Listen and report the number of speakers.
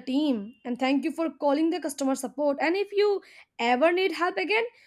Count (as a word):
one